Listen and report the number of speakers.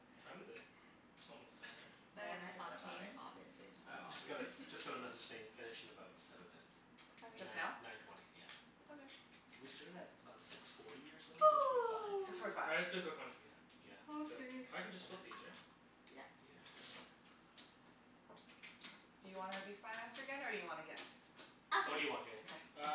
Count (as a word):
four